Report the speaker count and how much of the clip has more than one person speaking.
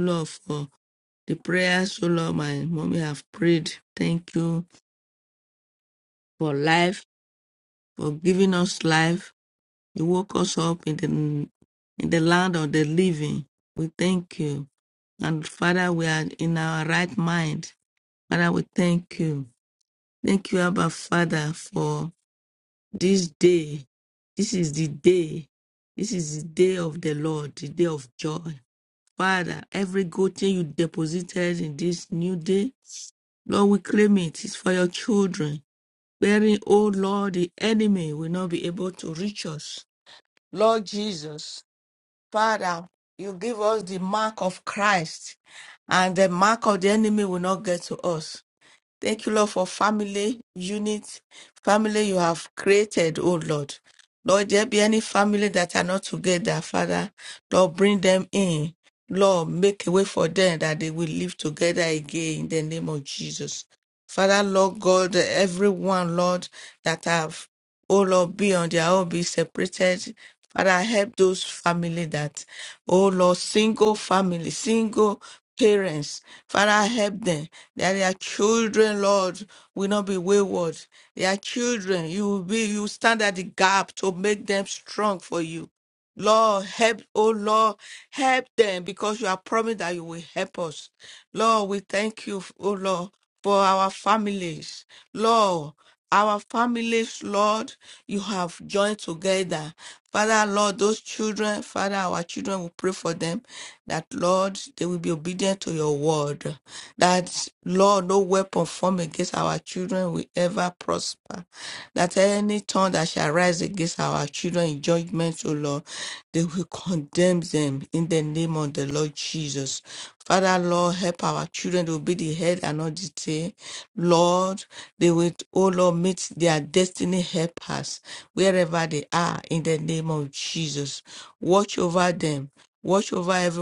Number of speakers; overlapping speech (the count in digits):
1, no overlap